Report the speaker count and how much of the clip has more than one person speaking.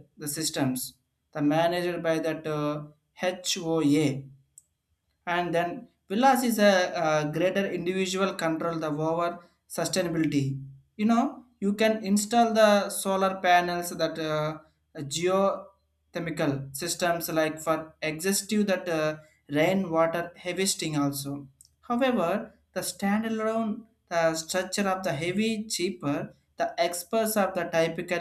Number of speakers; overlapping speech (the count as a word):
one, no overlap